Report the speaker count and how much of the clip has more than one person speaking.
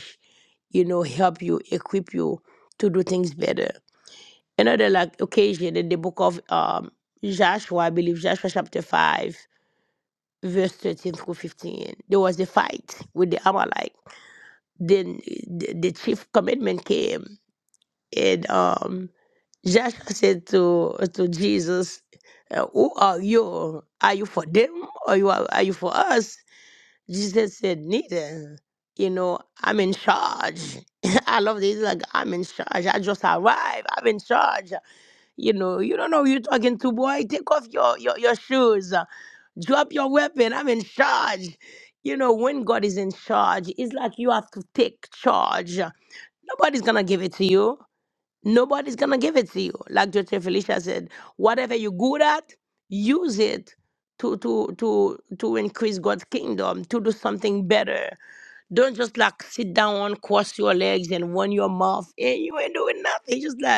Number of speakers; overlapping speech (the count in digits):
1, no overlap